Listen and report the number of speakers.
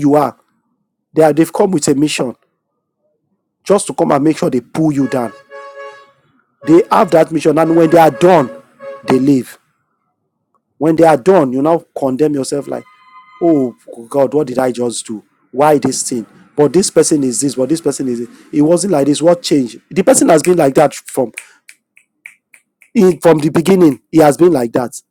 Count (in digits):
1